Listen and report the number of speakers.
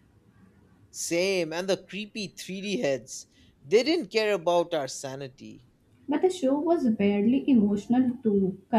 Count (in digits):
2